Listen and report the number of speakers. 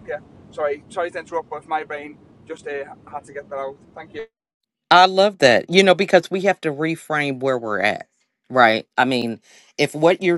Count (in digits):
2